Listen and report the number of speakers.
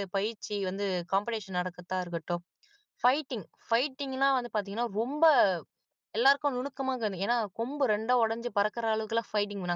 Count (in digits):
1